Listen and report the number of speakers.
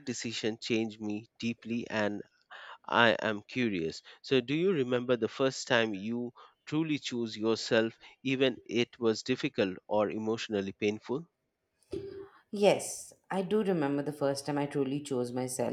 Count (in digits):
2